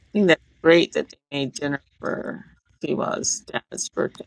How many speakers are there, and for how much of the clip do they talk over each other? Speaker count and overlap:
1, no overlap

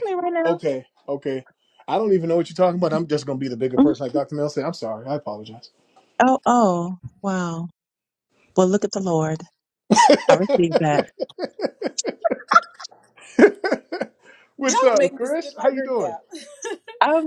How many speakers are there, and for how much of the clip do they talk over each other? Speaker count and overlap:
3, about 10%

